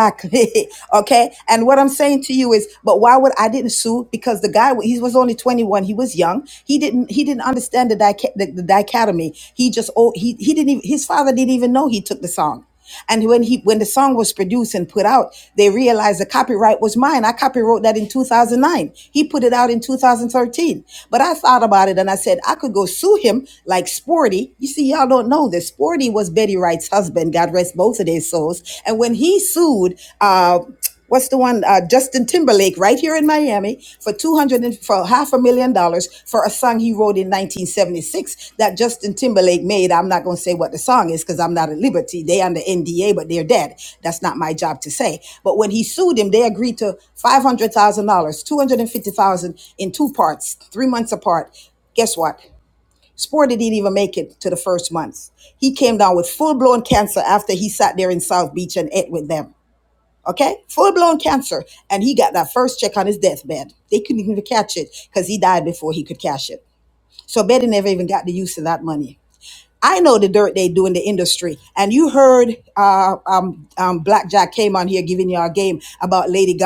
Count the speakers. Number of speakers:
1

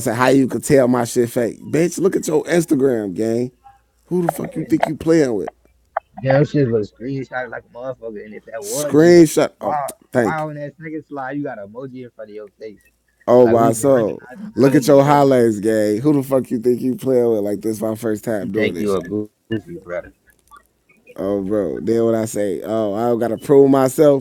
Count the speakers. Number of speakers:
2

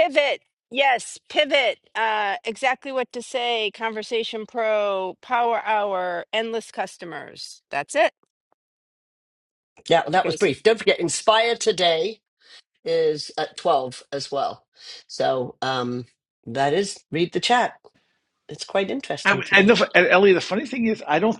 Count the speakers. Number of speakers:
3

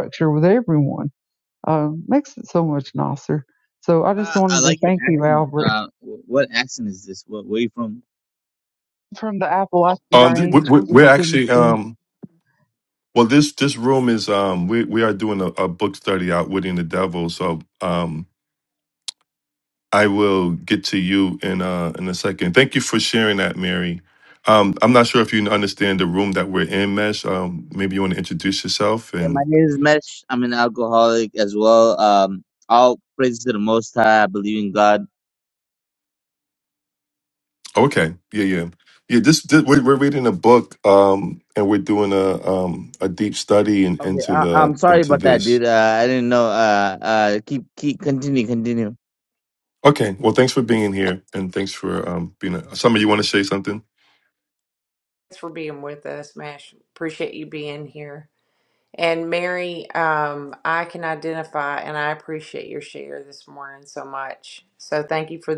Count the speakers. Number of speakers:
4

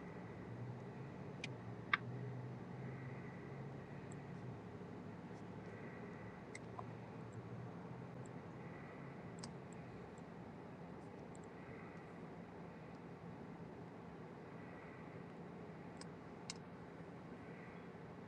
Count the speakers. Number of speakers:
0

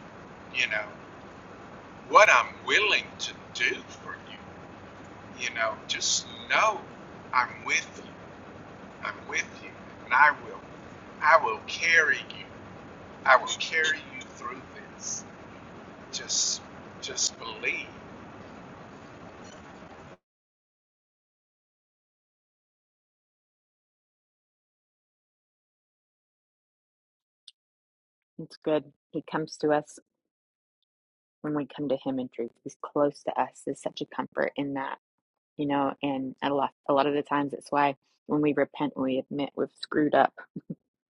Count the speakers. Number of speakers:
2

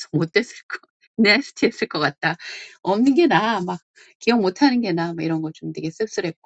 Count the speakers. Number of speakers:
1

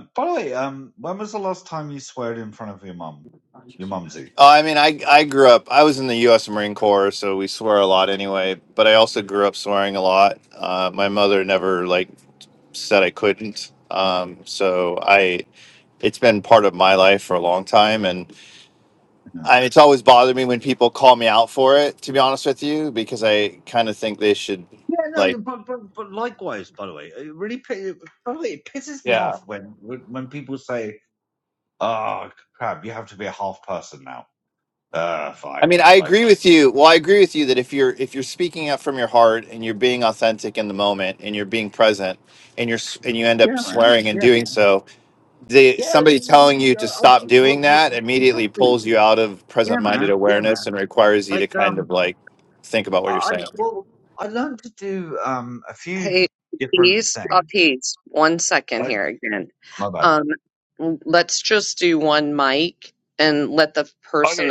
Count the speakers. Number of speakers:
3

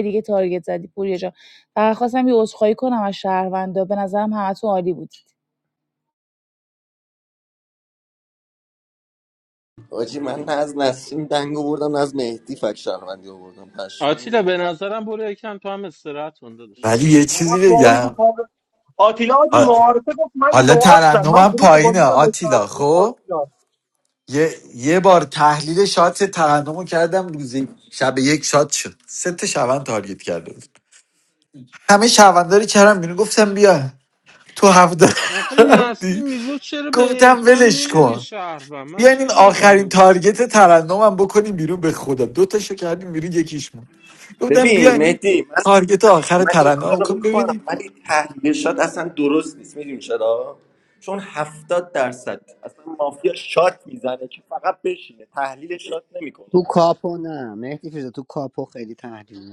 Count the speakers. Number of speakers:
6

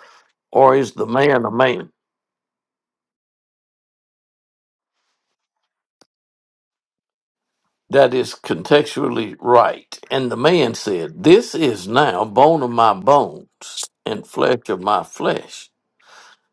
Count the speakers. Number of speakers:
1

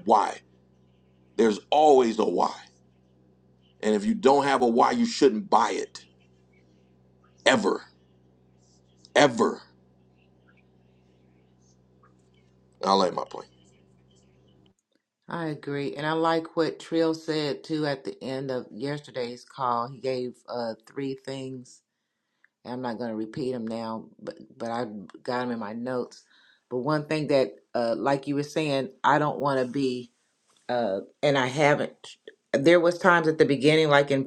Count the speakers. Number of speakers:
2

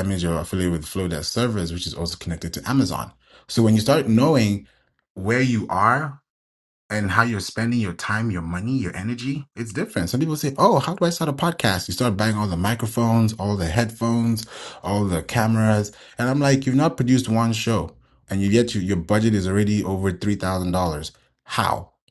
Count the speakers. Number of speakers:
1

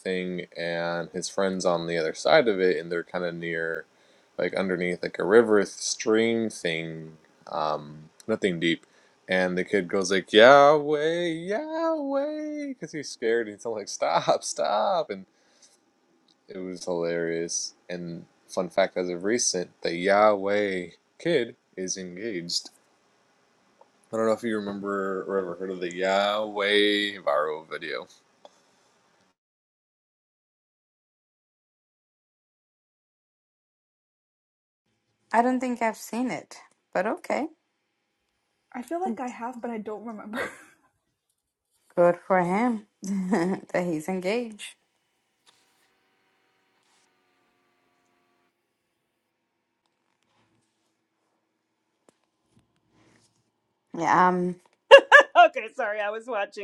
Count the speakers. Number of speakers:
4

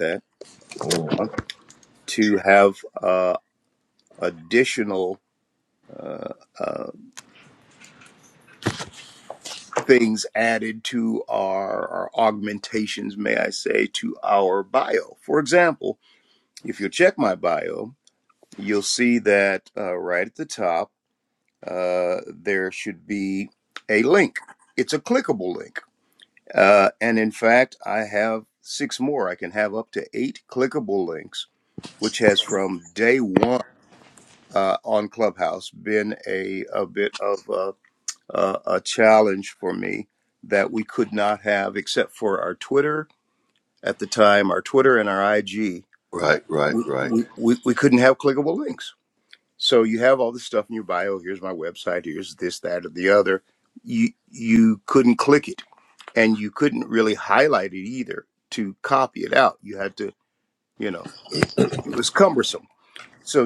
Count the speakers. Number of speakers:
2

